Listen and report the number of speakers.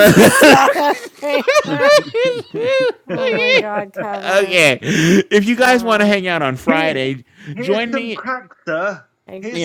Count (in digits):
3